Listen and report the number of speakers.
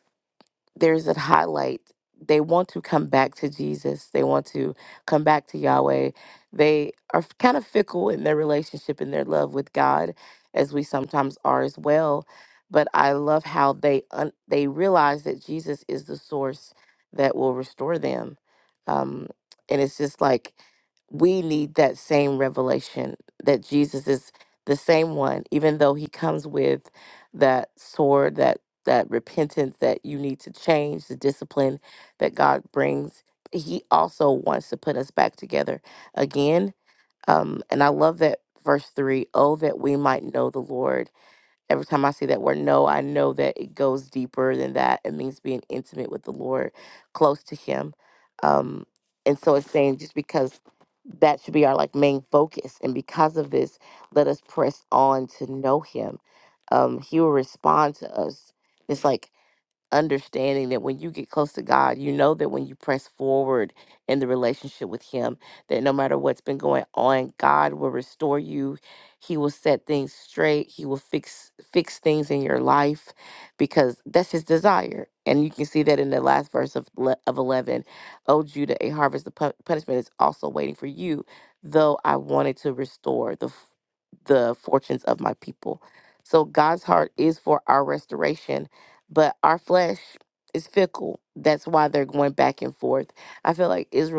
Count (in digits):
1